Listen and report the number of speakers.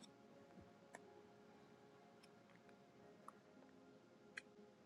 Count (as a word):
zero